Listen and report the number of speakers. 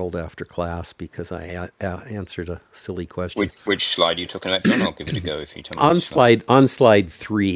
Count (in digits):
2